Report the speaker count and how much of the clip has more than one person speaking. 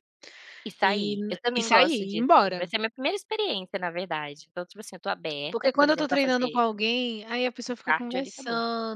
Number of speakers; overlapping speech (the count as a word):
two, about 39%